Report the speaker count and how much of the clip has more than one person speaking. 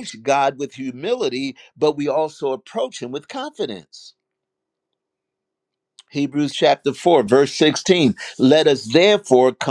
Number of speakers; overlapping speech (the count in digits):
1, no overlap